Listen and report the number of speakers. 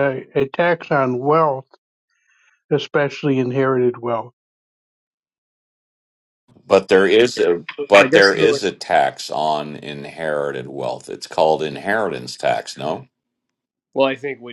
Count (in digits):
3